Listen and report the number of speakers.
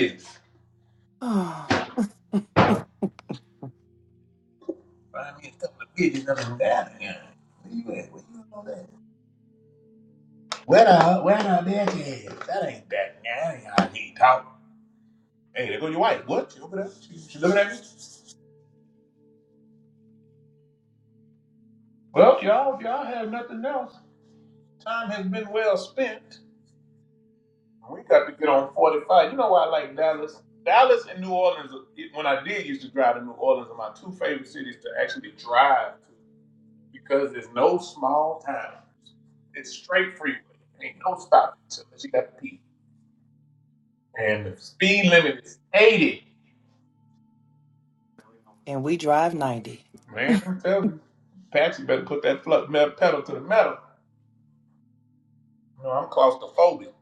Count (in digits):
2